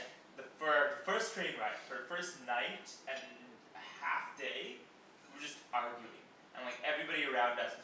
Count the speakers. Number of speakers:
1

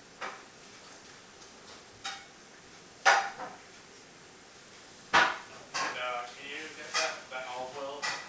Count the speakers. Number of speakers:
1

